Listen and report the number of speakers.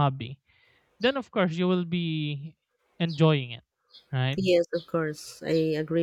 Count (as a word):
two